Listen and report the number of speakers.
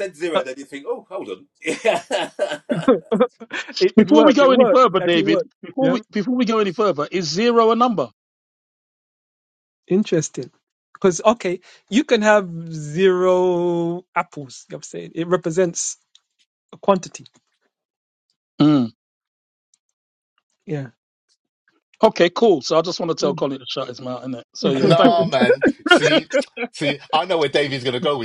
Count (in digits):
4